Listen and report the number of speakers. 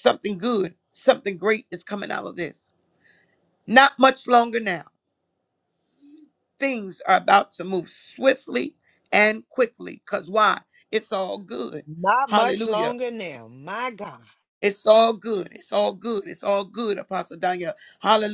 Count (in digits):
2